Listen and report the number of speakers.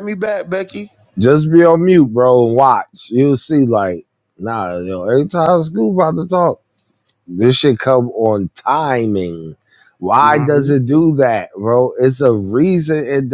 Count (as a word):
two